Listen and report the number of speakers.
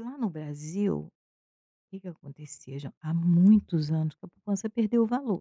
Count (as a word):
one